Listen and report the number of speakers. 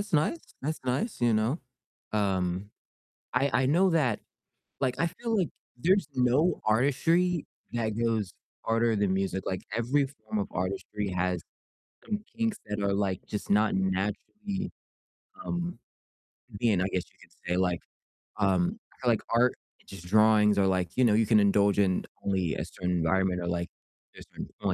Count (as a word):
one